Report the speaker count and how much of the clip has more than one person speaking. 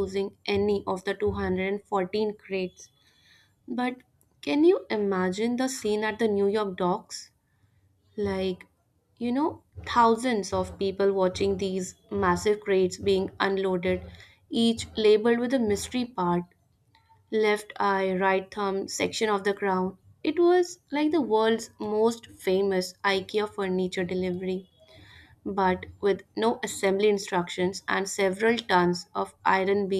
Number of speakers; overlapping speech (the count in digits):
1, no overlap